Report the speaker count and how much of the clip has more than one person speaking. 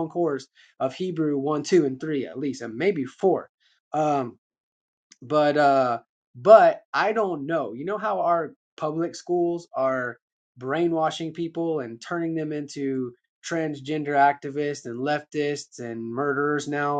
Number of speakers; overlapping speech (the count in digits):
1, no overlap